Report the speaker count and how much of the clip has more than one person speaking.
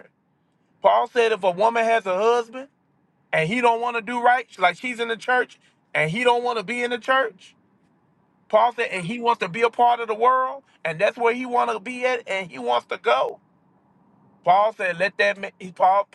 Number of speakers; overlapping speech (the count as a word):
one, no overlap